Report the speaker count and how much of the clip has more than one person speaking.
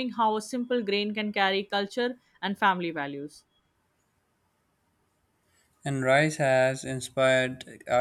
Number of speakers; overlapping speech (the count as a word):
two, no overlap